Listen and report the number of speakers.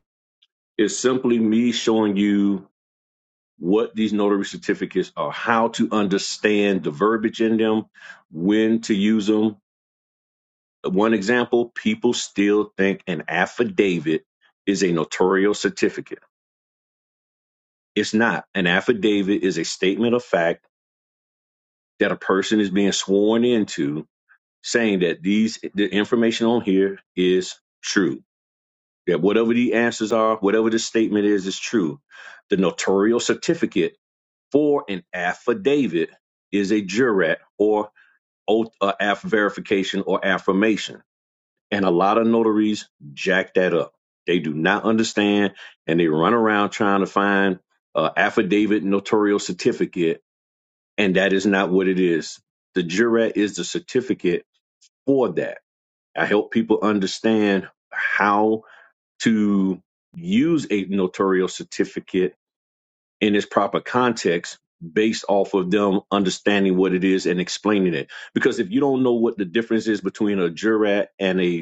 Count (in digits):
1